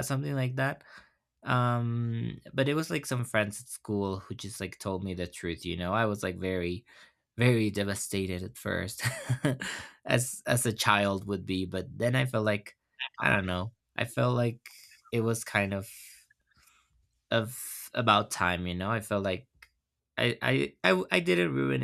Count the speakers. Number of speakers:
one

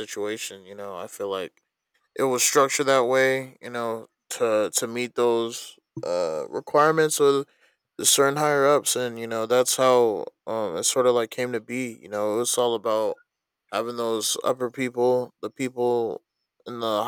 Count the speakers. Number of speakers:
one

